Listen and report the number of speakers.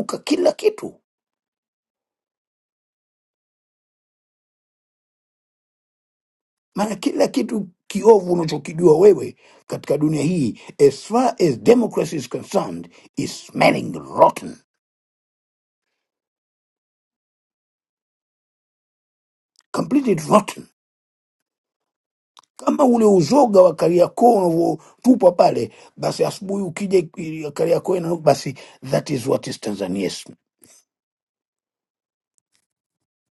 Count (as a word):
one